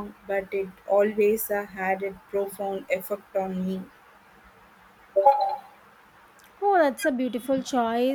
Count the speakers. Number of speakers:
2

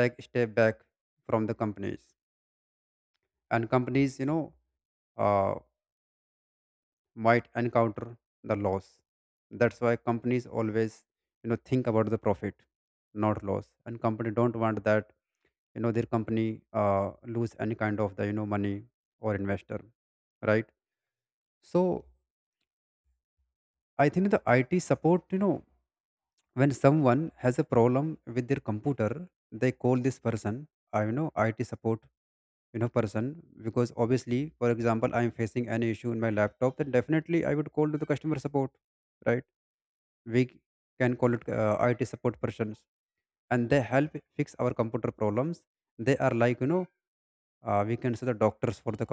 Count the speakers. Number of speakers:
1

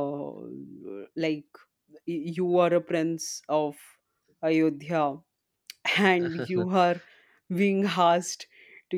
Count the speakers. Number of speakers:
1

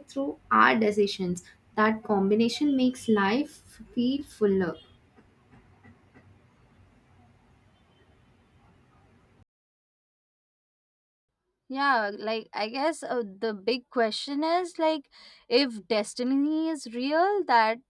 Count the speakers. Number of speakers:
2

